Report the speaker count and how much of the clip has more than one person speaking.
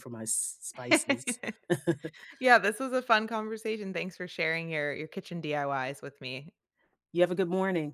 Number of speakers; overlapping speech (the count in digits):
2, no overlap